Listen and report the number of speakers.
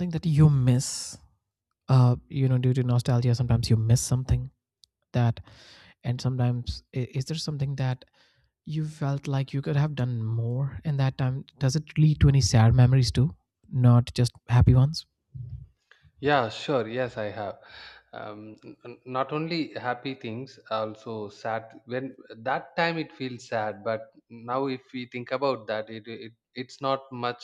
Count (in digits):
2